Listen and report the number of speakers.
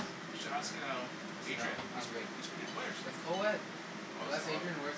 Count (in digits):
2